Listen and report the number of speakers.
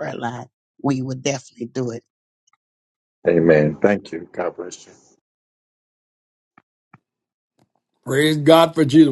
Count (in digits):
3